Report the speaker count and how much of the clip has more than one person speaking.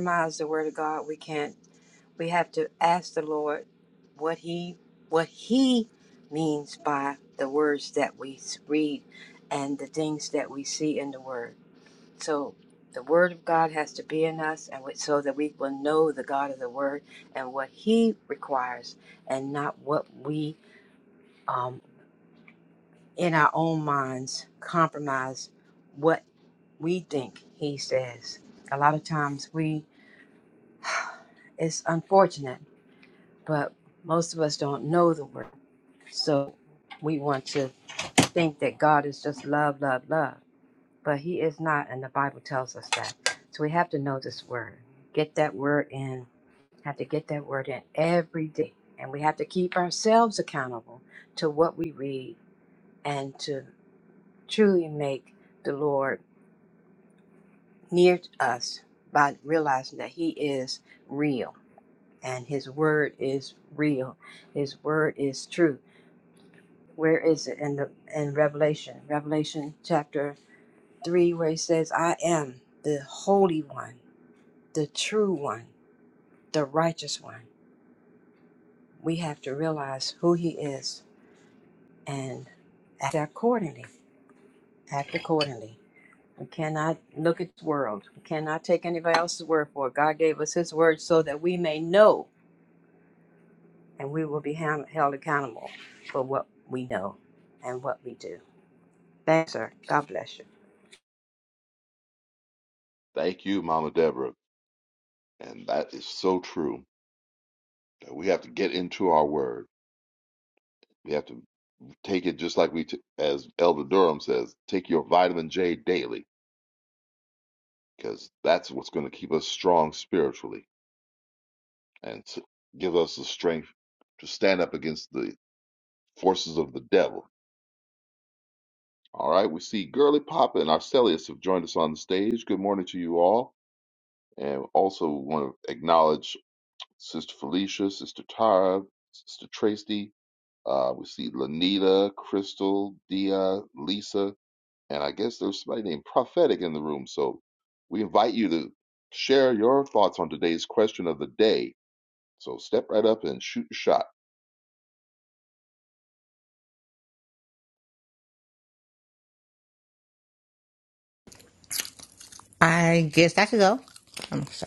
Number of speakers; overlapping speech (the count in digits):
3, no overlap